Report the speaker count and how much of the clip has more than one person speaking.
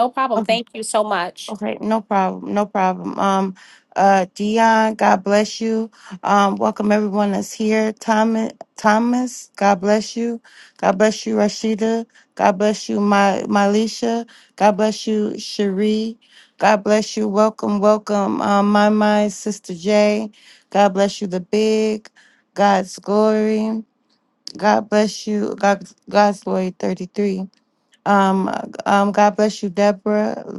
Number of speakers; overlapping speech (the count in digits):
2, about 1%